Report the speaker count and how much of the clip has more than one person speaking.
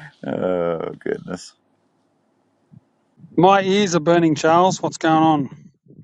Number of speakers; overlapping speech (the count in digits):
2, no overlap